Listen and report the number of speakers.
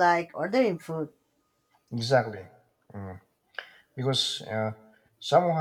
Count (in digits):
2